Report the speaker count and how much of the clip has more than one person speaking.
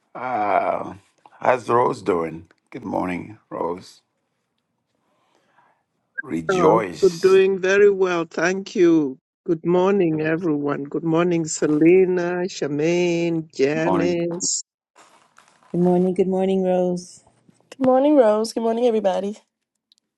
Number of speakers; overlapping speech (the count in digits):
4, about 5%